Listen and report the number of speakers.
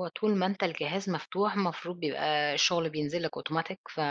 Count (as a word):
one